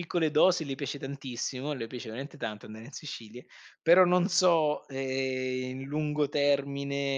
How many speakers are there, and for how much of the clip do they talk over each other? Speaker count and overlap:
1, no overlap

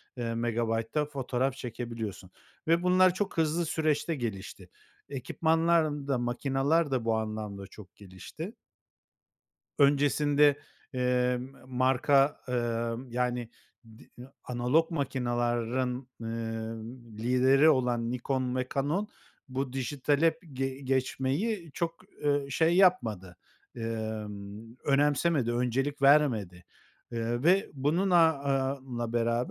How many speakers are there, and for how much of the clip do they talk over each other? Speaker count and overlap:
1, no overlap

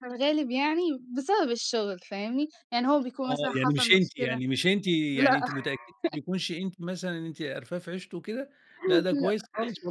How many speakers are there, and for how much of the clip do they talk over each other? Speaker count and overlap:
2, about 17%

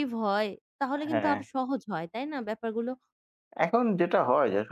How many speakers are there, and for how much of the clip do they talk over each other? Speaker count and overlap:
2, about 8%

